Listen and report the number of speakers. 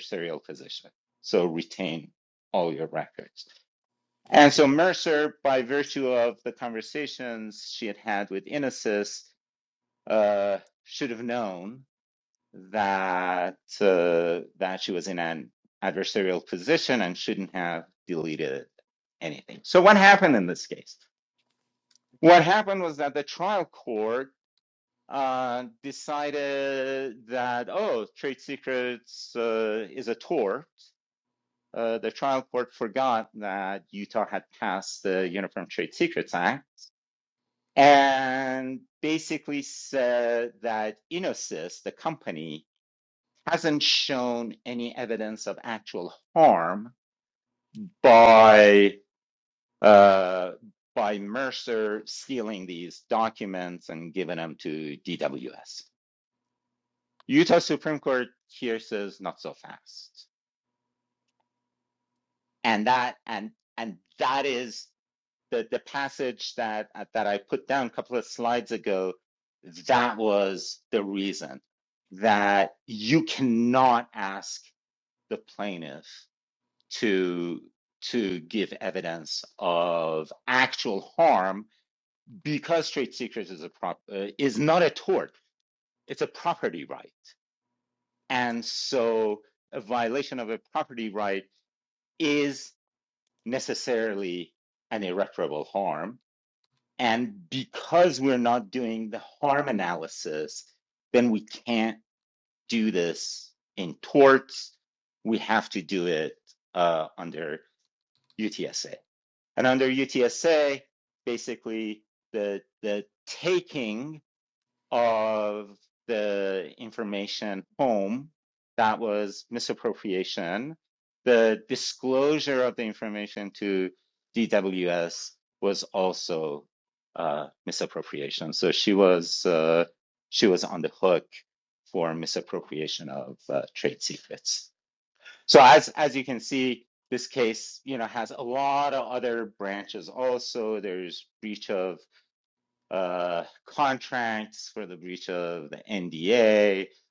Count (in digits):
1